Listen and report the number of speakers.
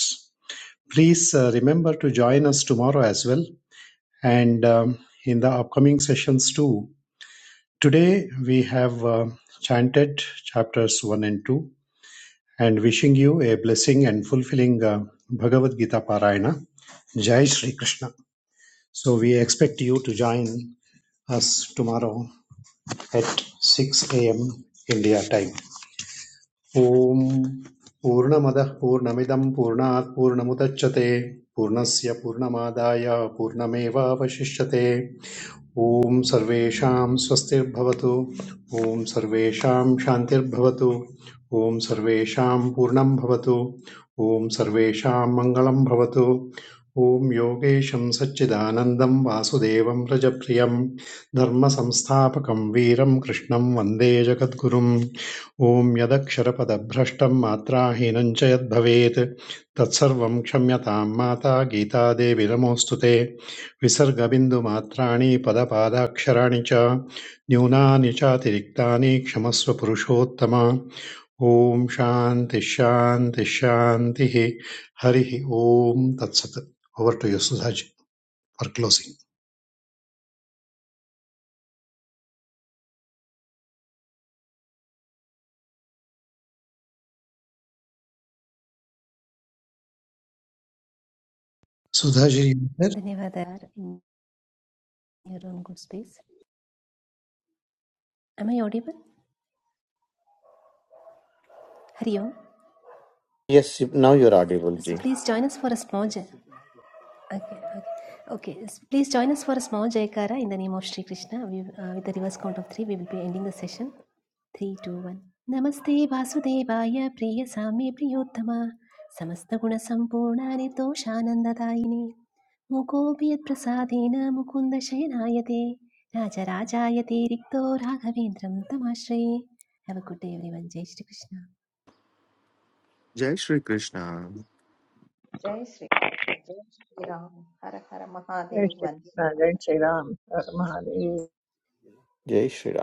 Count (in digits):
6